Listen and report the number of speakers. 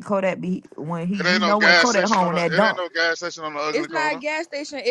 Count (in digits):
3